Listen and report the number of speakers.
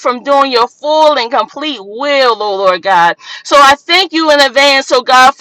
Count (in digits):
1